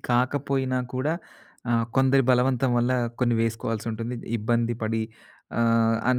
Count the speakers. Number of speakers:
1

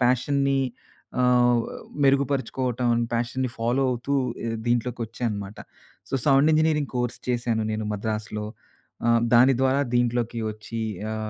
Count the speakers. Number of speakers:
1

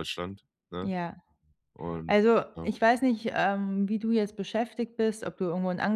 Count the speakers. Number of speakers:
2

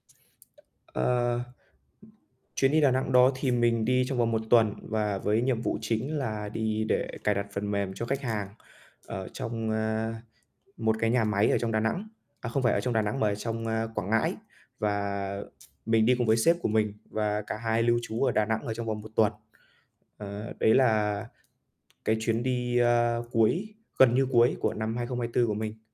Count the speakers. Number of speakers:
1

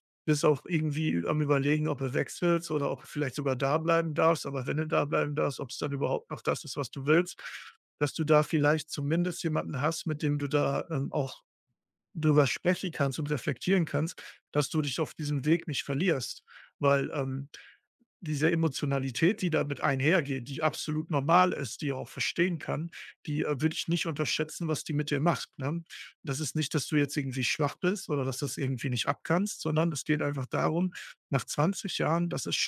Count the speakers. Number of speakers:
1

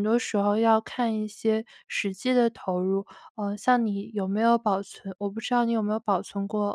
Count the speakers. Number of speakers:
1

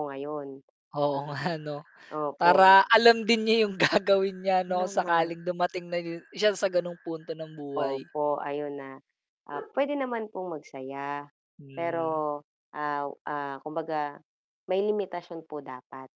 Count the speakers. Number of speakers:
2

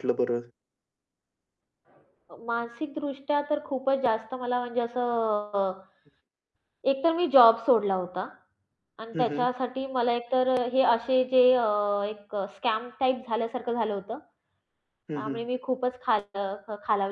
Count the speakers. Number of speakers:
2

